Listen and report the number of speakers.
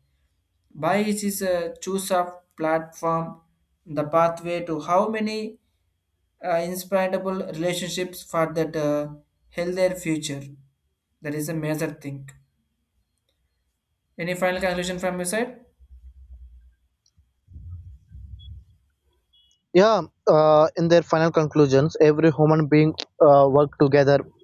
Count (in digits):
2